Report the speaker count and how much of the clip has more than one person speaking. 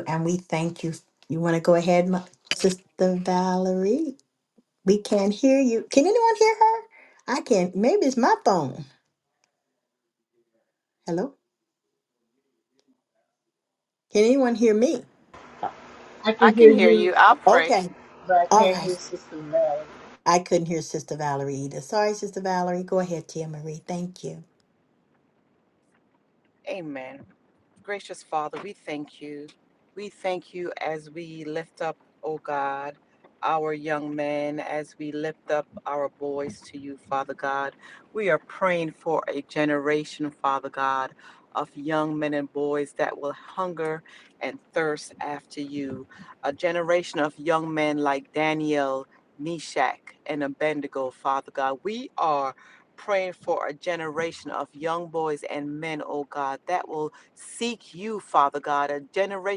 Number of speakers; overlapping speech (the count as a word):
three, about 2%